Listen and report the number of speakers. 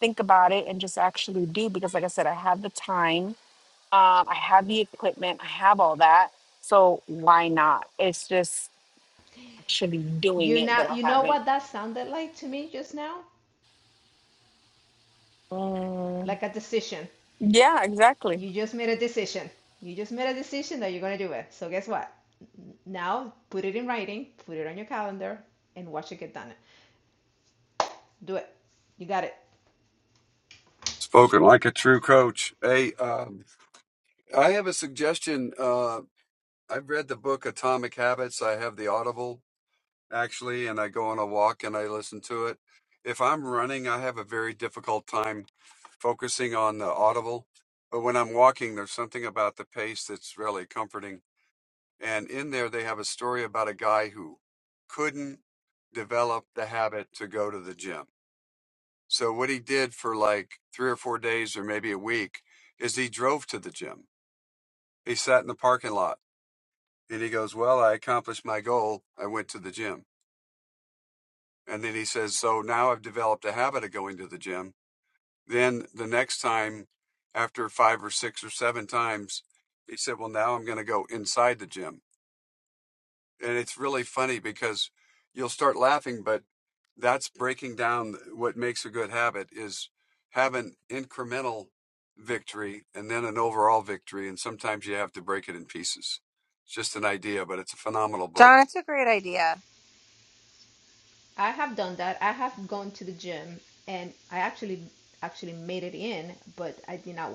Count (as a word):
four